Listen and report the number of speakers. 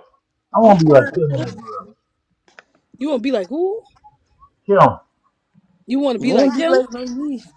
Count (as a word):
three